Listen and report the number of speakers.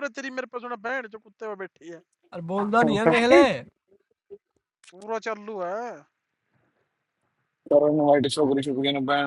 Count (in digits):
3